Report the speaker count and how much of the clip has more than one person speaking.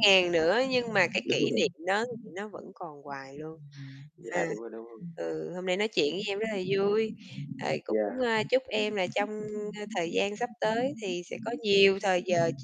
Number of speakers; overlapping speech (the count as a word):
two, about 4%